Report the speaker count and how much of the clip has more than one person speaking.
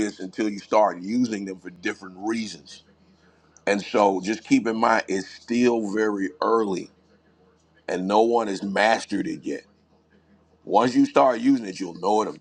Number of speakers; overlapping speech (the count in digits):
1, no overlap